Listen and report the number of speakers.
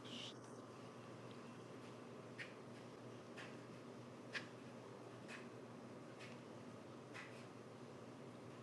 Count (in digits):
0